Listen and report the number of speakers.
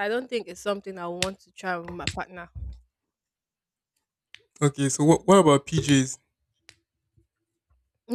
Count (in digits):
2